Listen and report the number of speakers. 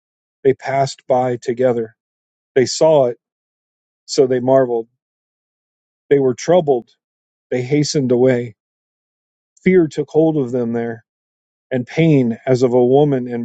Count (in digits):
1